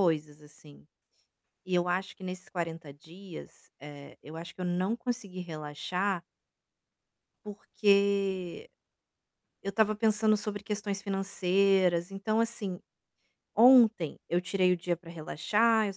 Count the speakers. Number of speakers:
1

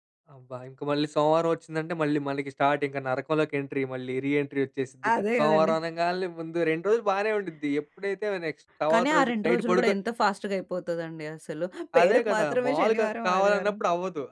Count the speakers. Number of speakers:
2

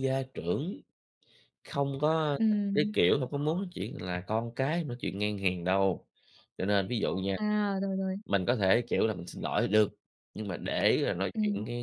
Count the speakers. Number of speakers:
2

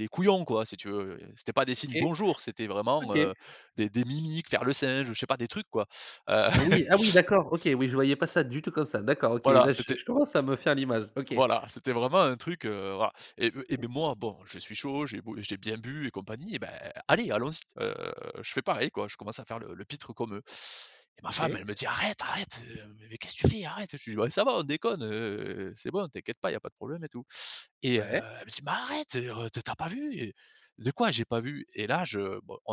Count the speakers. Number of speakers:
2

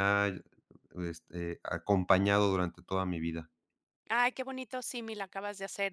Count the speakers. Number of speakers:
2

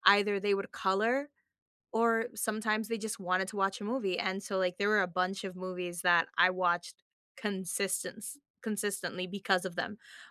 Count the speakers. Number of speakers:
1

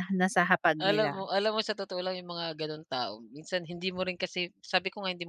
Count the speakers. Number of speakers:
2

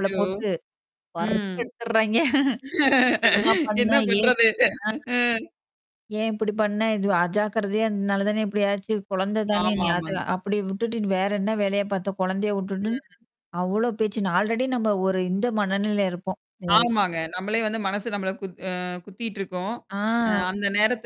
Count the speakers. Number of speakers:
2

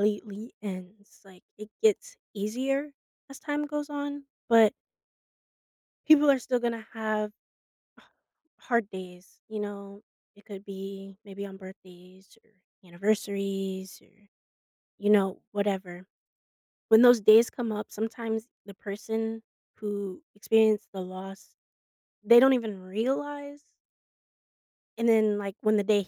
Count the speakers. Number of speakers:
1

